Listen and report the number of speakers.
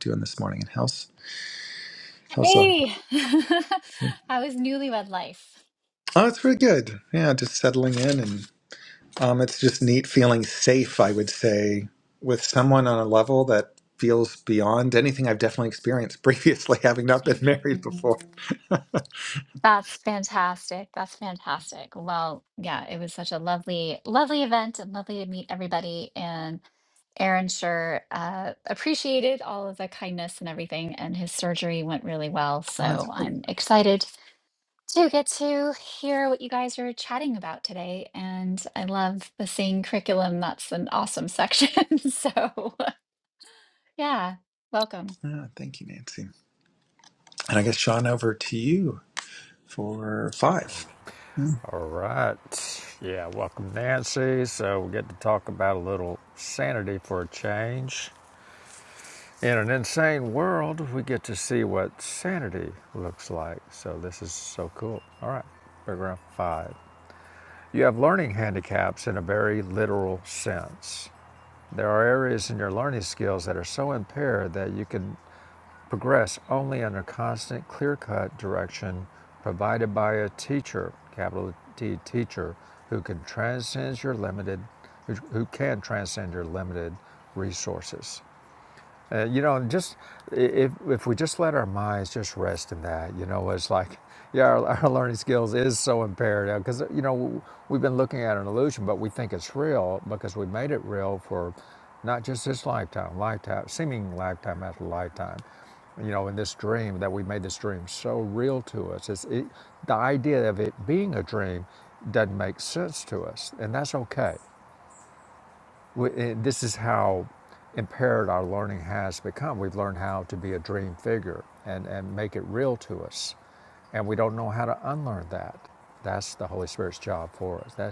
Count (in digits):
3